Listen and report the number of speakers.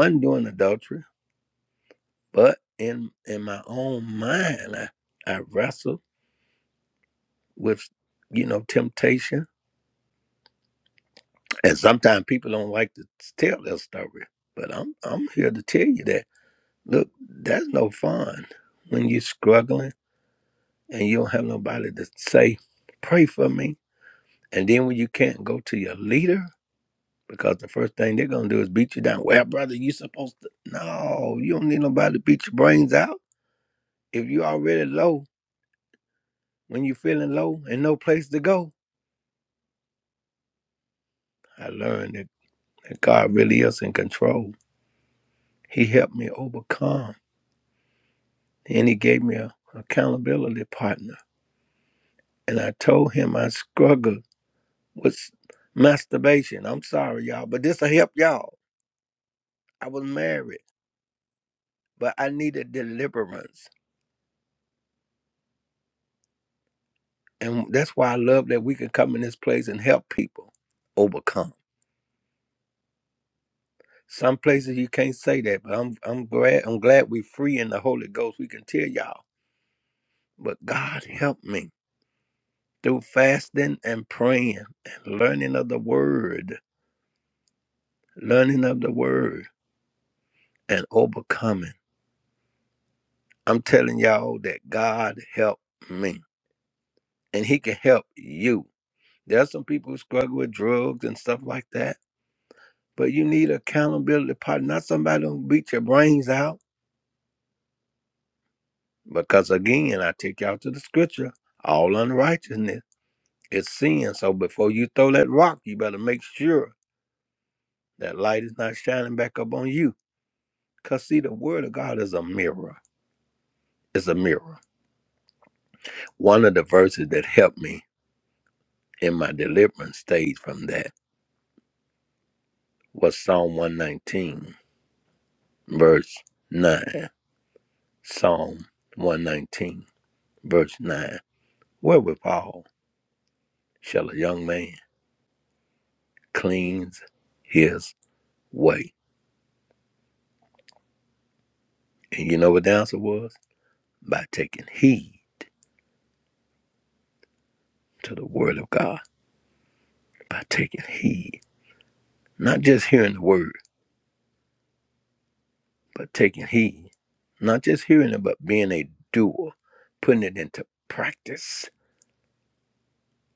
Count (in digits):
1